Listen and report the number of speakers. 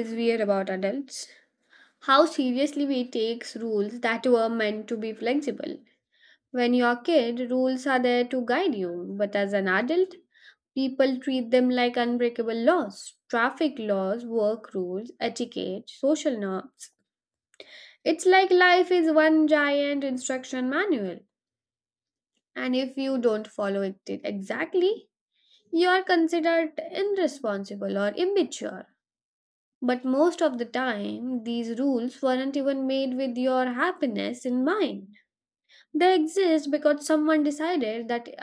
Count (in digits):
1